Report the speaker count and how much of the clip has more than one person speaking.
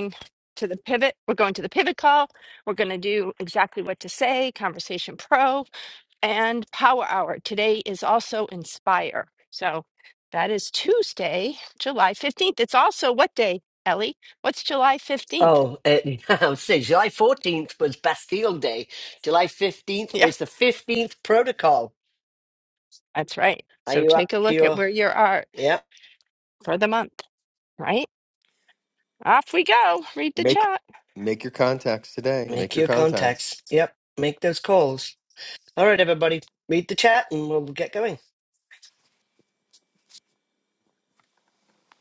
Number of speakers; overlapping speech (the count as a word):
three, about 6%